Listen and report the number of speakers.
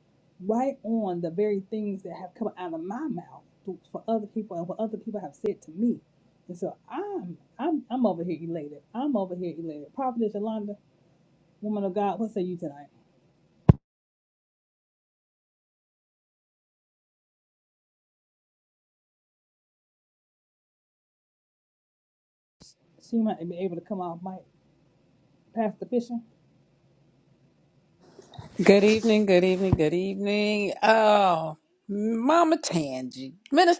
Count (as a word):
two